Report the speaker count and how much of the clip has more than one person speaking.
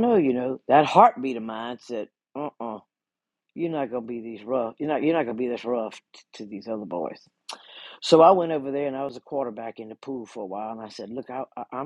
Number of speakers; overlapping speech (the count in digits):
1, no overlap